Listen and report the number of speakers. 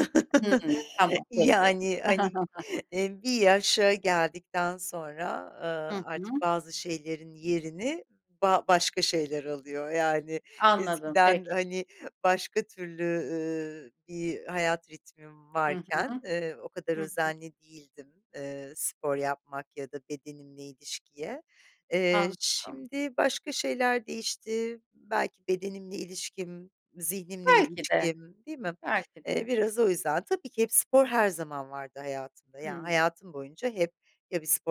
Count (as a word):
two